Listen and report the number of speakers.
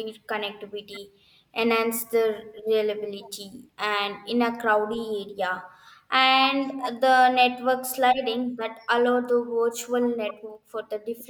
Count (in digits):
1